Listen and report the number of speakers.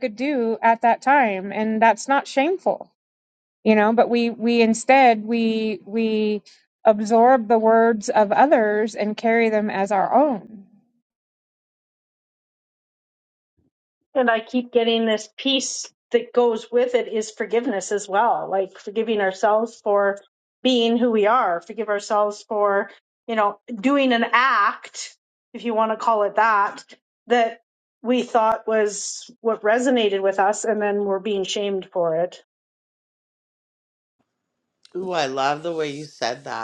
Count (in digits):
3